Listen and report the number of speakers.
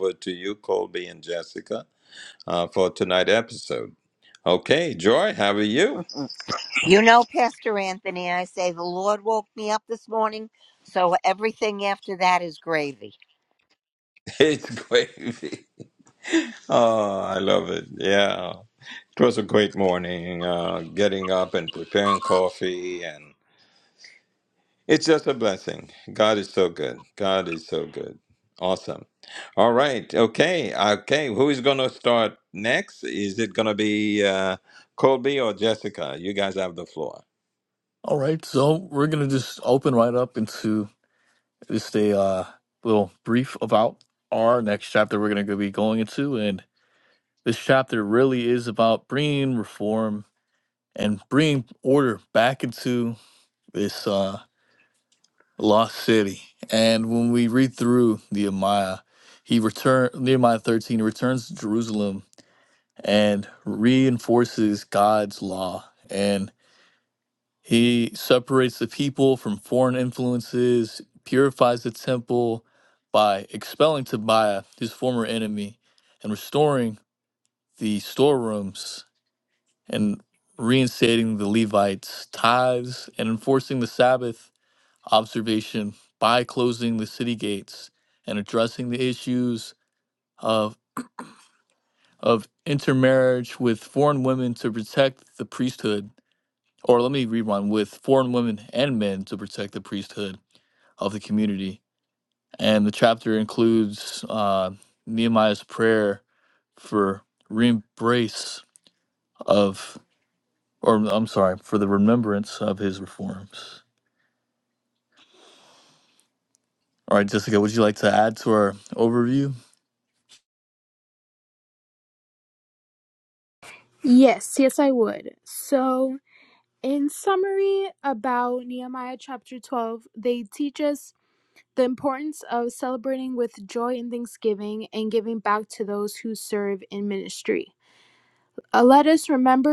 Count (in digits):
4